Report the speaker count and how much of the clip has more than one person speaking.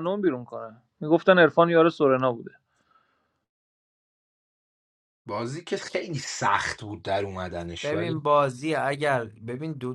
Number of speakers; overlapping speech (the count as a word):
three, about 3%